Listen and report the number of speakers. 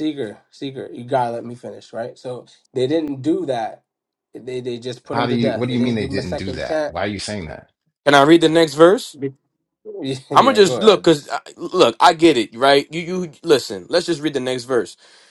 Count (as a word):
three